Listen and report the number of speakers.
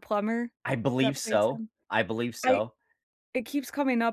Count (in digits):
2